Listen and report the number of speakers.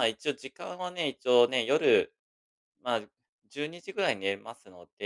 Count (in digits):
1